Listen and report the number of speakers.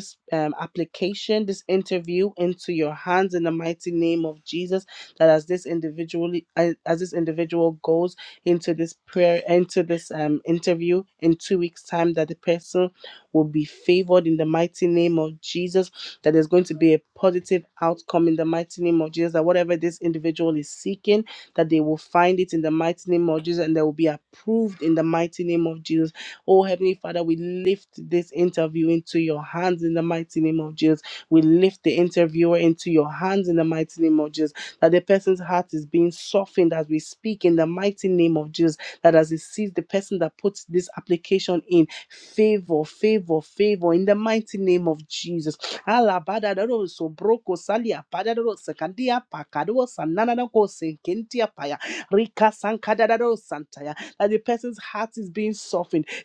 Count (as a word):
one